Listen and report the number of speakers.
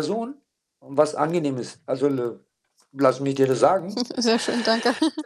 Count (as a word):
two